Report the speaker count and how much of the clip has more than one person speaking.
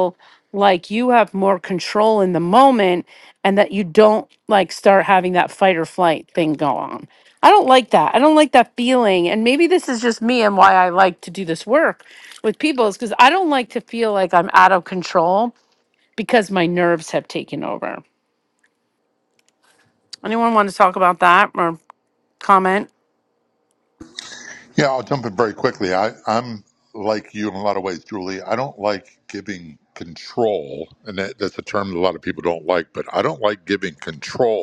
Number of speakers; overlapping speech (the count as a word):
two, no overlap